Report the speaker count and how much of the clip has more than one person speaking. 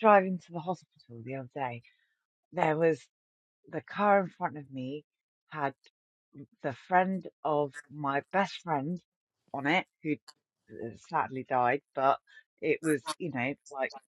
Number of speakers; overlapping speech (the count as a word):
one, no overlap